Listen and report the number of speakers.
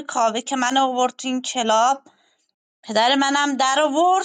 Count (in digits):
1